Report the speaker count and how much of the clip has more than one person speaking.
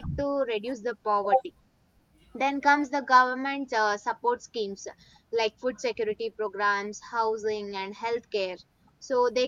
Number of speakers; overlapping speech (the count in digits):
1, no overlap